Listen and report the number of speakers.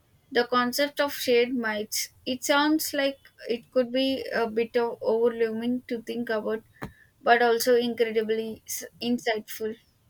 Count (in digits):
1